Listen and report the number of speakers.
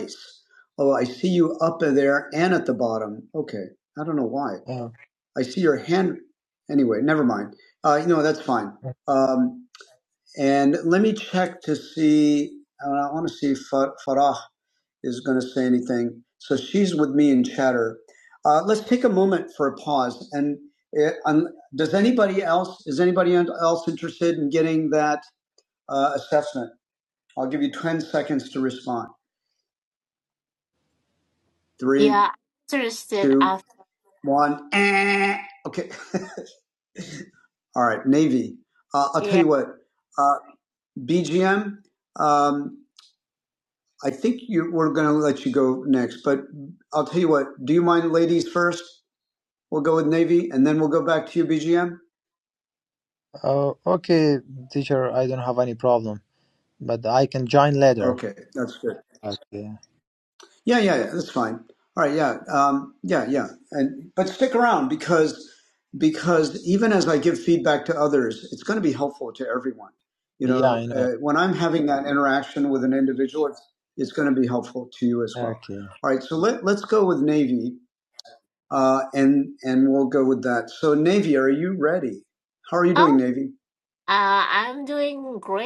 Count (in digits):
3